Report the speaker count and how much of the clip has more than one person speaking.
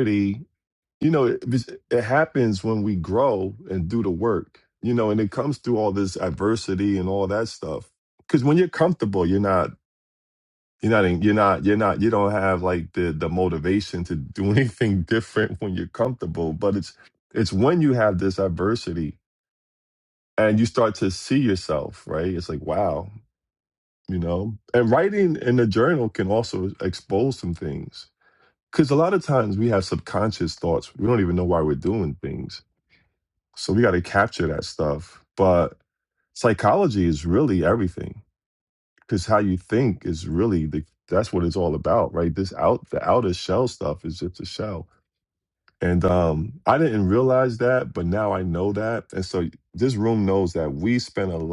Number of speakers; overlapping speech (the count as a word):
one, no overlap